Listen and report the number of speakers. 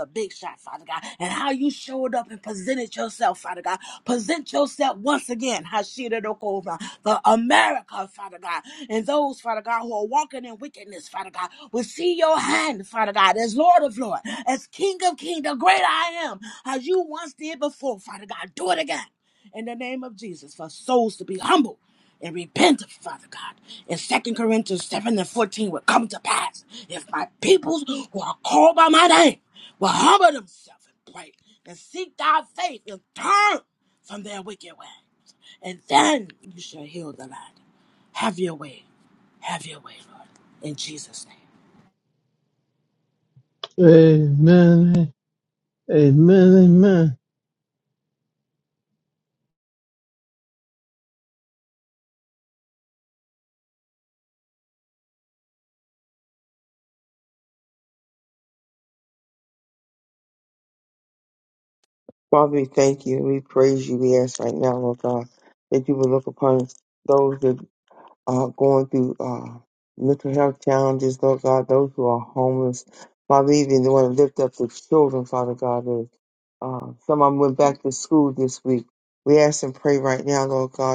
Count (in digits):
3